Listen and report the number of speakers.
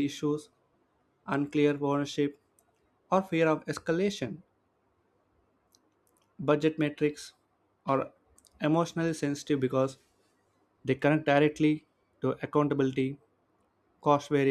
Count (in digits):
1